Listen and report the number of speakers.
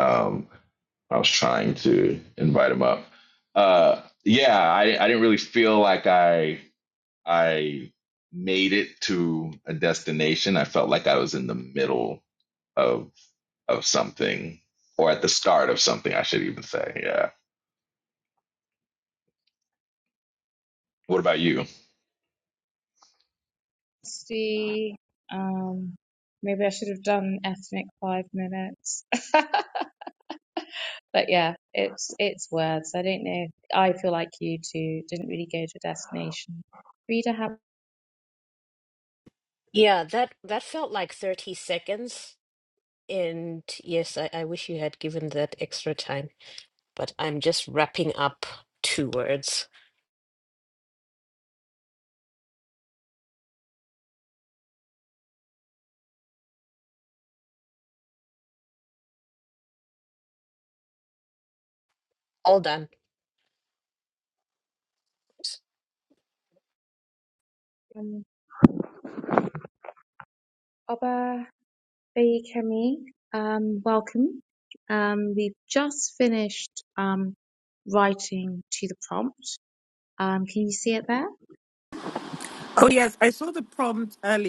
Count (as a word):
four